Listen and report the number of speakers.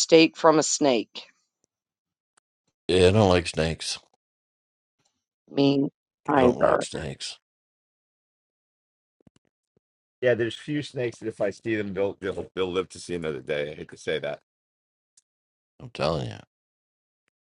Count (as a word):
three